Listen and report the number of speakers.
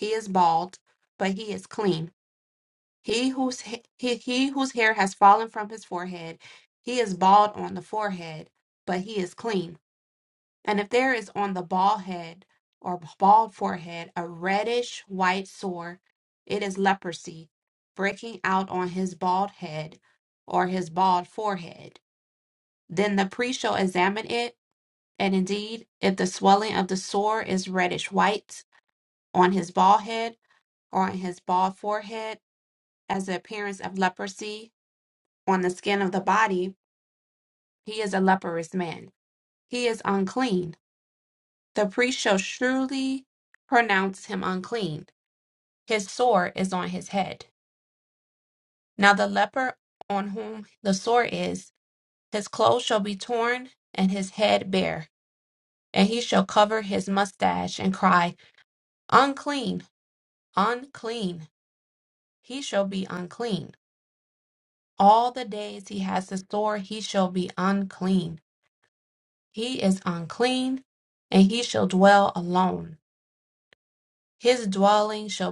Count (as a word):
one